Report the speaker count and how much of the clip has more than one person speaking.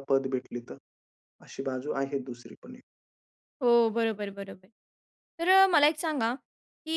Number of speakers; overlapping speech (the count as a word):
two, no overlap